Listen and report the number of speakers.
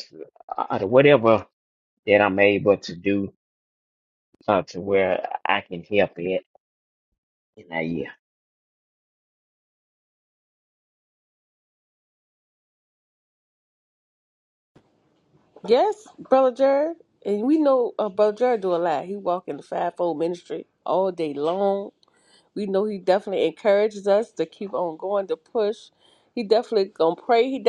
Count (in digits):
2